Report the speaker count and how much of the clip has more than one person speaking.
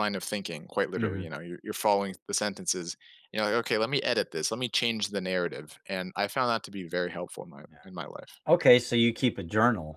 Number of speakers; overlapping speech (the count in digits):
2, about 4%